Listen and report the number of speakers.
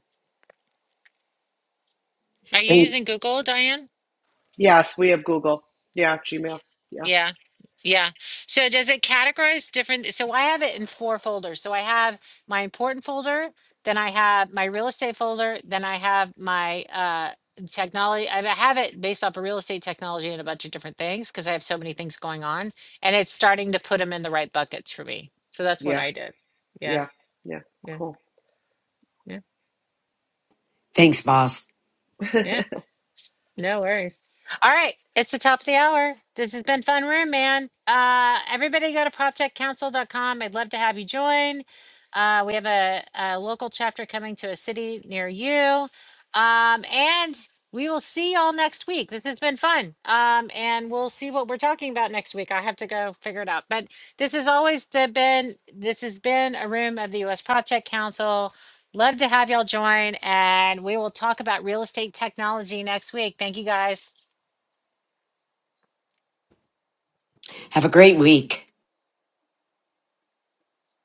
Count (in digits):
3